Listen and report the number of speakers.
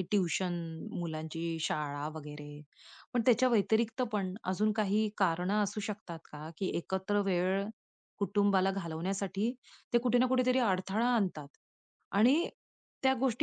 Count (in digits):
1